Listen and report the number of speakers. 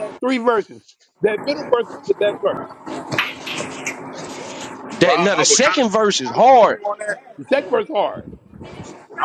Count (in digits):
3